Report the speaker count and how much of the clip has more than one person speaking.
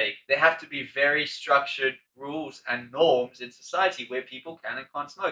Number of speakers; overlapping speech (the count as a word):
one, no overlap